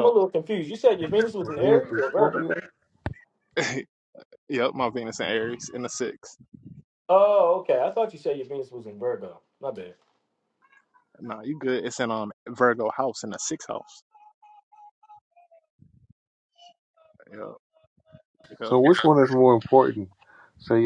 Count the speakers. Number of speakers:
3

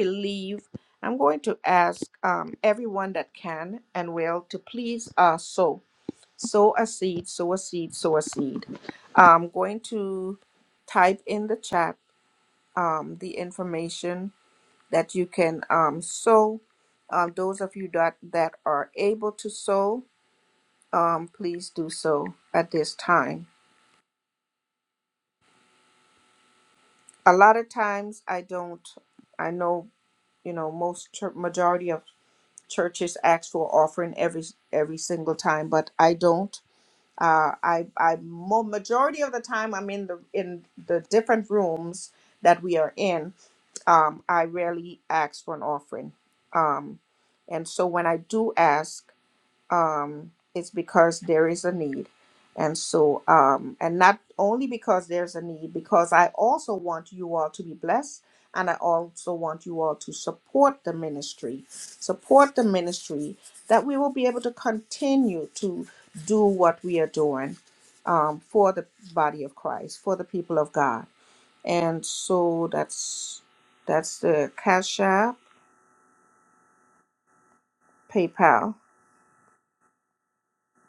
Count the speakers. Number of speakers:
1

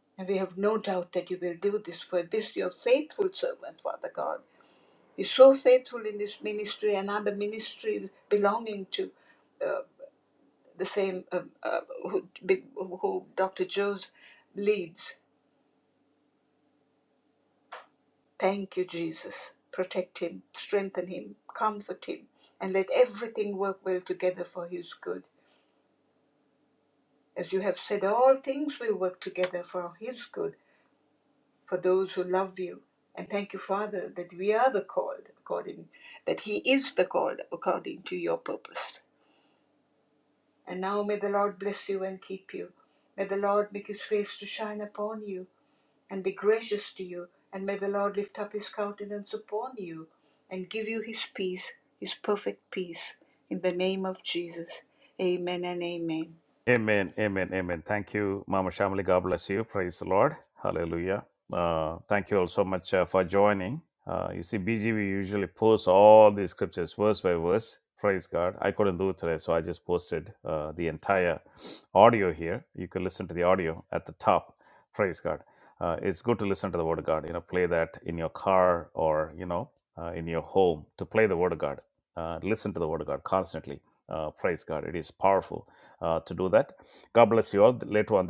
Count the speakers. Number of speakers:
2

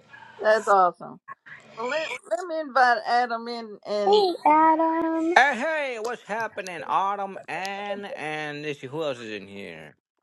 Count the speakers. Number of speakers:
3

